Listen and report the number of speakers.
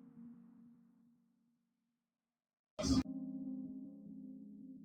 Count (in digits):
0